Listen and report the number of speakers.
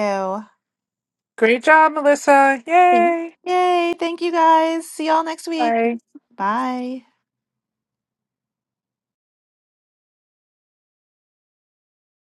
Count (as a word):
two